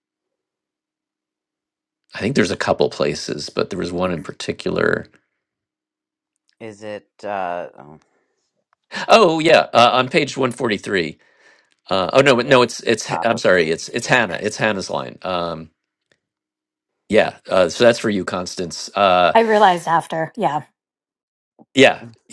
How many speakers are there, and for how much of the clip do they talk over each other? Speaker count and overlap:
3, about 5%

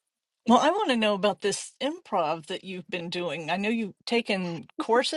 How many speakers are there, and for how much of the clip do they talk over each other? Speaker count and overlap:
1, no overlap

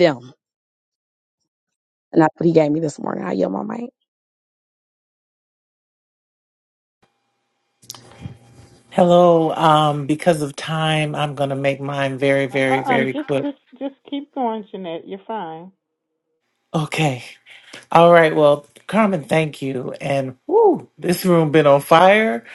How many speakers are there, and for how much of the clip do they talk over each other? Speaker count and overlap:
3, about 4%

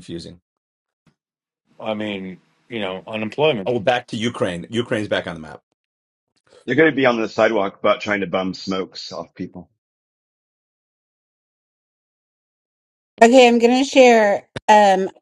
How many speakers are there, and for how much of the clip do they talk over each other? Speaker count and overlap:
4, no overlap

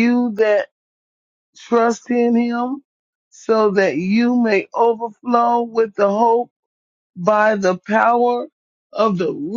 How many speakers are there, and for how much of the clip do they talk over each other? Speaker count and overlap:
1, no overlap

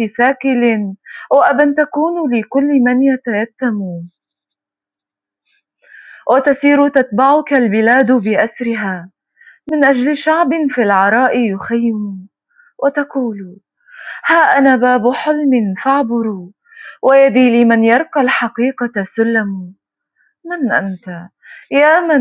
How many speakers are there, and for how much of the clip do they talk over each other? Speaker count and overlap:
1, no overlap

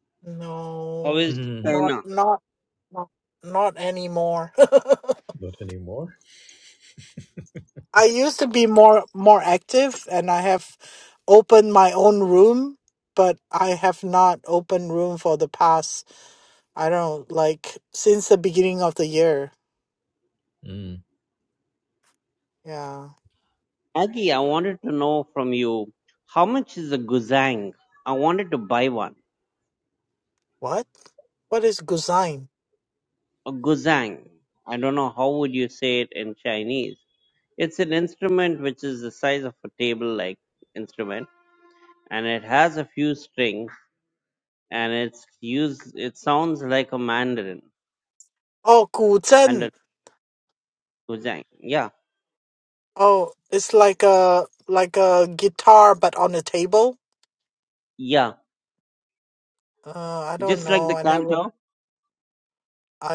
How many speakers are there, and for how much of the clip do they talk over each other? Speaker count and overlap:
3, about 3%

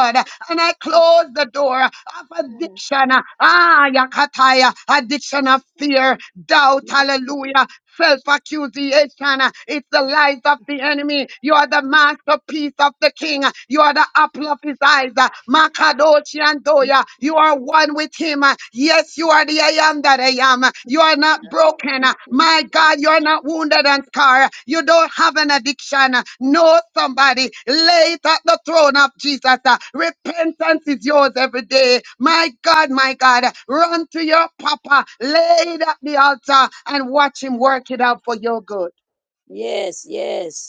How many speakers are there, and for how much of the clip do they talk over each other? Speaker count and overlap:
2, about 2%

